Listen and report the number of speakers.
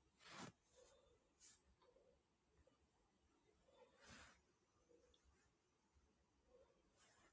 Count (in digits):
0